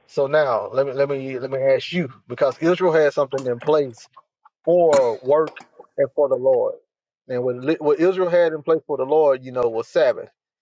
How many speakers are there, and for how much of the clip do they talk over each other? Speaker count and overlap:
1, no overlap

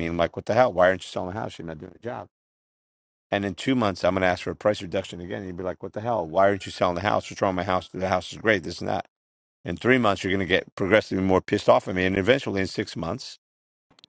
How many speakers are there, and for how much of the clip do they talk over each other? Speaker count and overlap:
1, no overlap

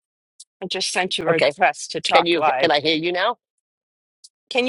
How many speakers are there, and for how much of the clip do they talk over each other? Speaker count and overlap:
2, about 19%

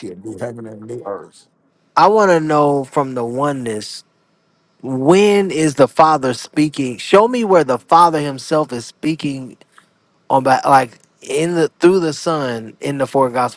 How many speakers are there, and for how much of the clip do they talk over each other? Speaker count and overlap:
2, no overlap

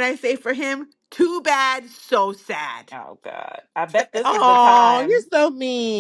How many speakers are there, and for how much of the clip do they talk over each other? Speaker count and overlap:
3, about 16%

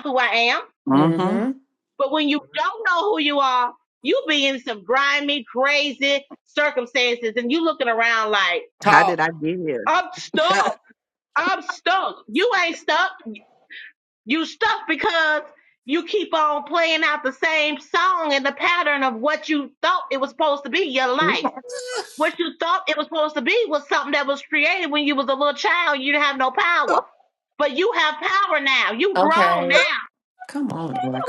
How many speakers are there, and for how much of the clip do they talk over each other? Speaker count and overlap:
3, about 5%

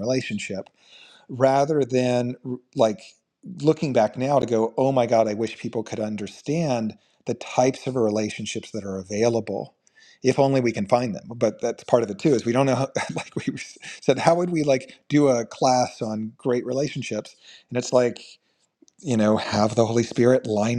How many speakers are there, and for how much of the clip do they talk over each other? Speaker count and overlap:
1, no overlap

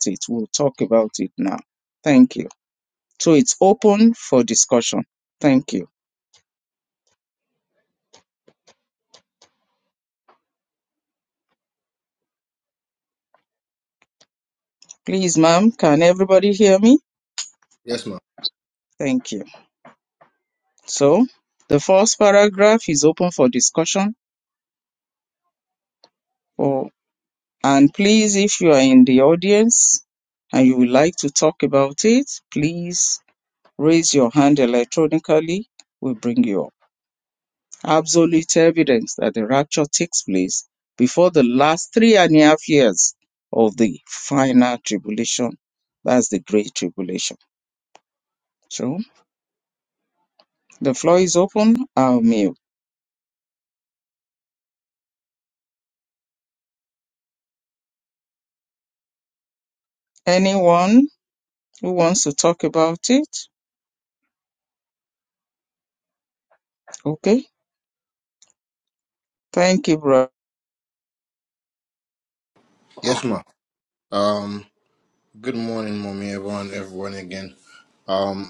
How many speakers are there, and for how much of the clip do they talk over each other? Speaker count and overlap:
2, no overlap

